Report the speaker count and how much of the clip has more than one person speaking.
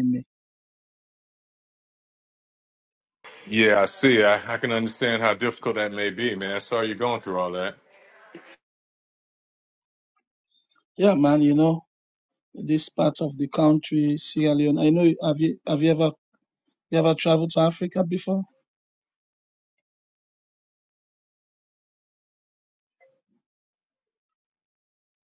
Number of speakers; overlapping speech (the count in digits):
2, no overlap